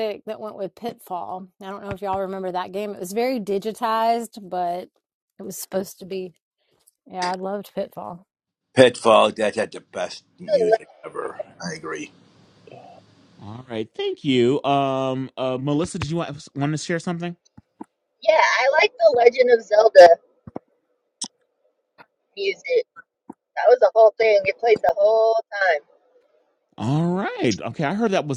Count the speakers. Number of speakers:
four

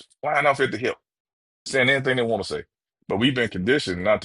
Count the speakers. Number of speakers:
one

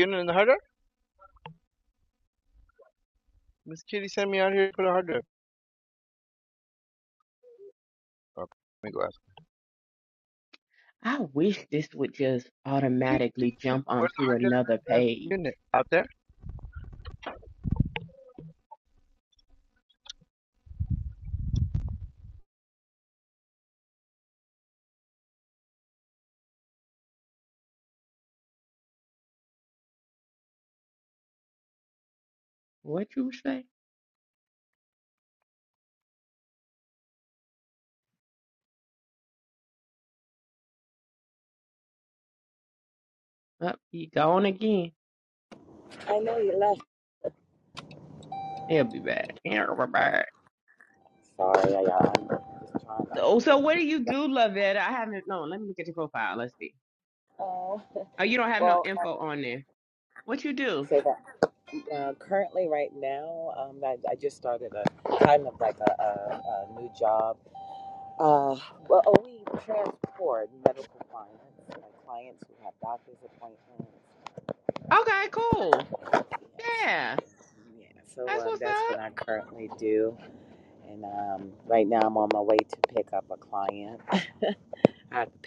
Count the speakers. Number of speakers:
three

